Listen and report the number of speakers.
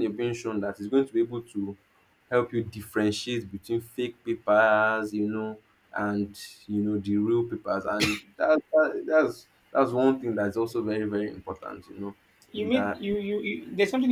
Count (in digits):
2